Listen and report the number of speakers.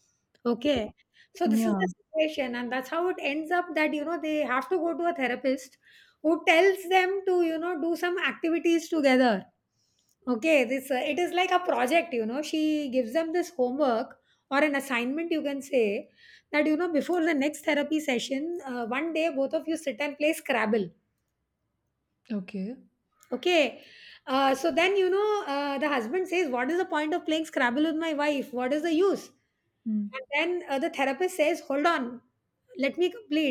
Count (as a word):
two